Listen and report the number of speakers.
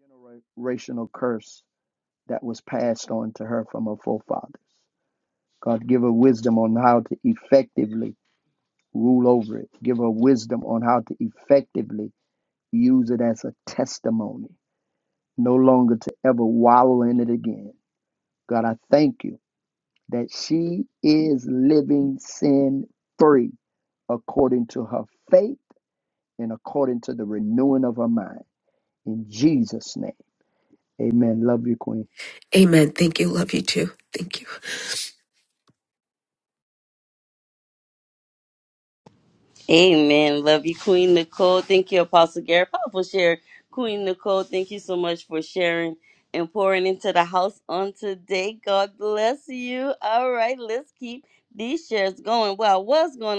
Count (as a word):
three